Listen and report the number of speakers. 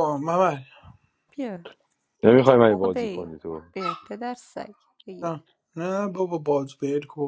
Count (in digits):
3